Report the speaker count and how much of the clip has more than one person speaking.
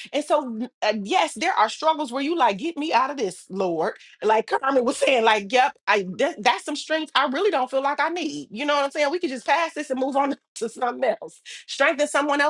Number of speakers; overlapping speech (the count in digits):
1, no overlap